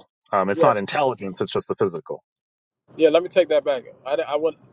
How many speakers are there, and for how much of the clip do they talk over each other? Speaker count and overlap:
2, no overlap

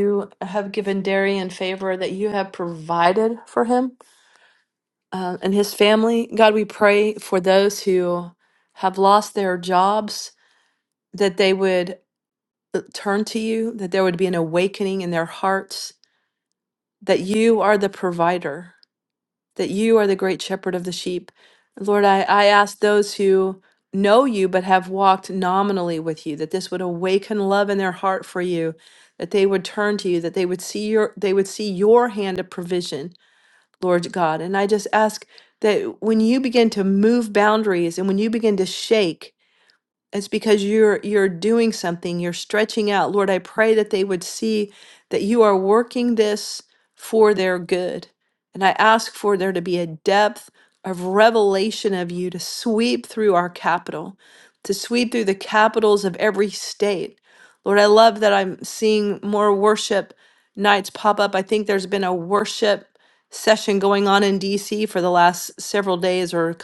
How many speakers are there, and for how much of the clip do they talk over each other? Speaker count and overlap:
1, no overlap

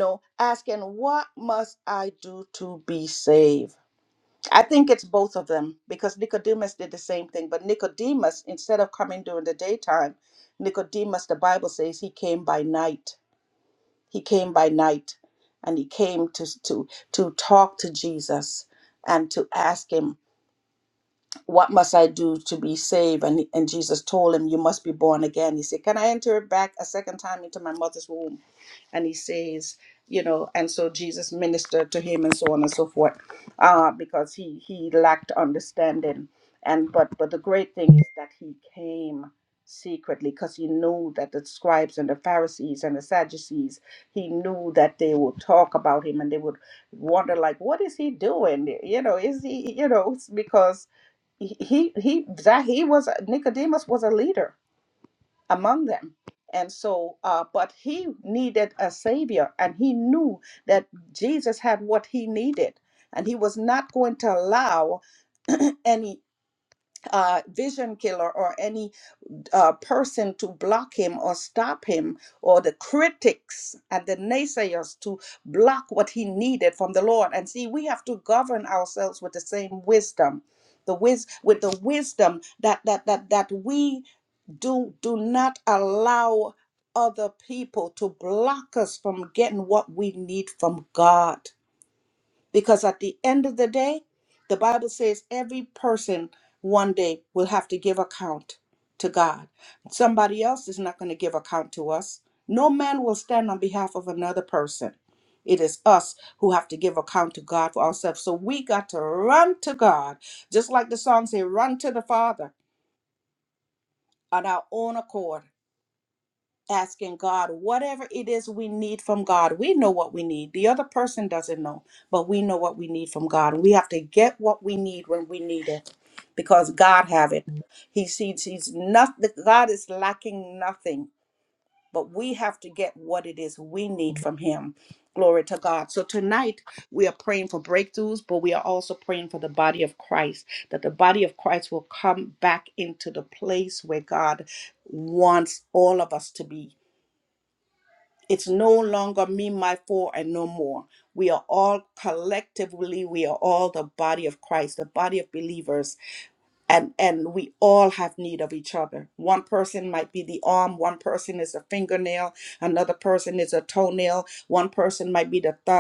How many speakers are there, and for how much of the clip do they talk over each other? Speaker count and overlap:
1, no overlap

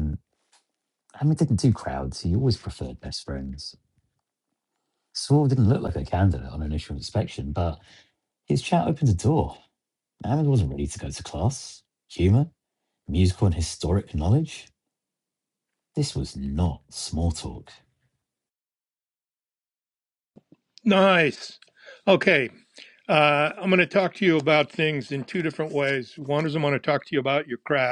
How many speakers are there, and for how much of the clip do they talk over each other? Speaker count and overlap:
2, no overlap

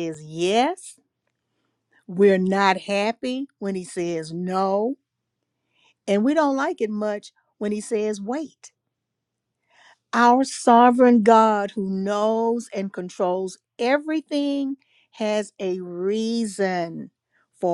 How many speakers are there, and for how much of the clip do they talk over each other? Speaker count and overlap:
1, no overlap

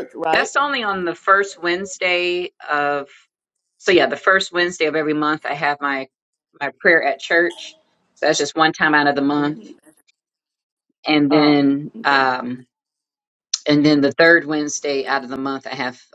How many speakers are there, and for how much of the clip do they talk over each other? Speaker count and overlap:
2, about 6%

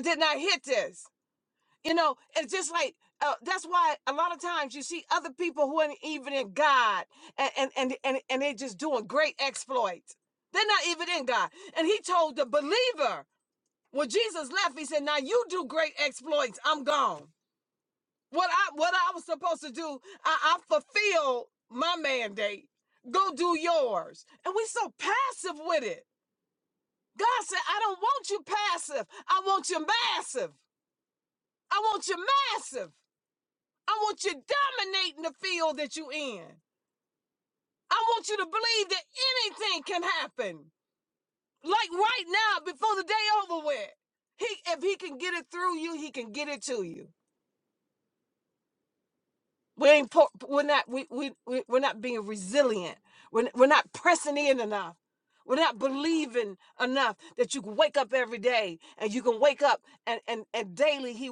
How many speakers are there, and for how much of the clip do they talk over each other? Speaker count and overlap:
1, no overlap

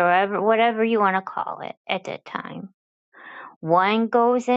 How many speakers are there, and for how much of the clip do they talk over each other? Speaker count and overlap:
1, no overlap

